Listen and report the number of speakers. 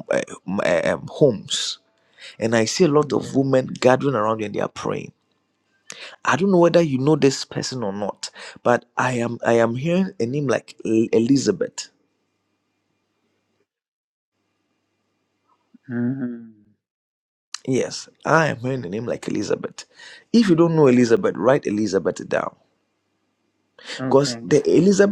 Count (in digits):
2